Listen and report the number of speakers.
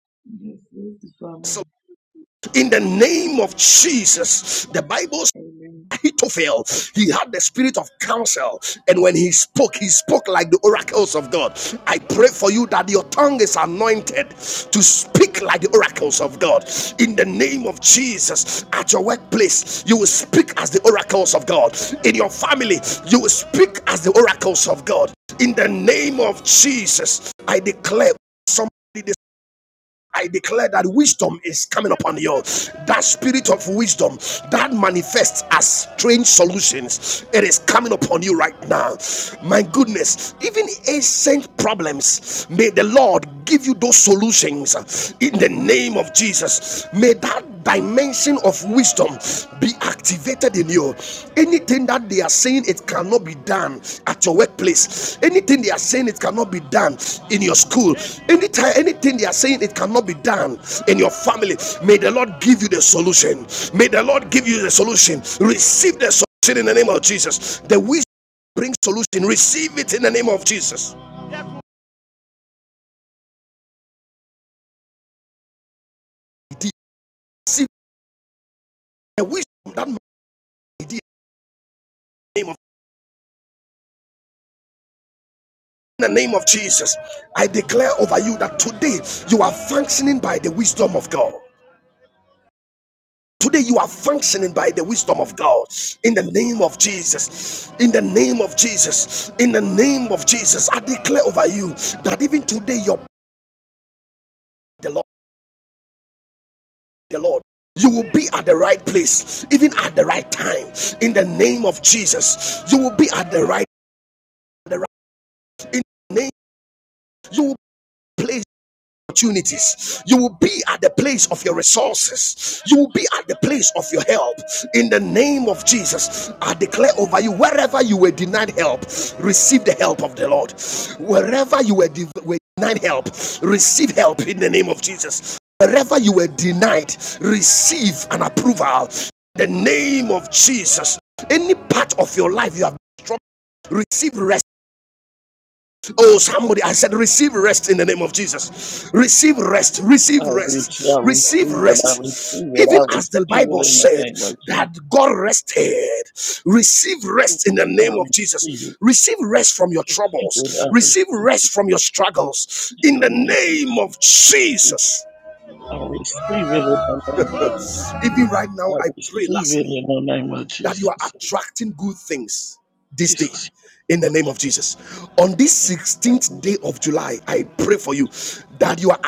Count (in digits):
3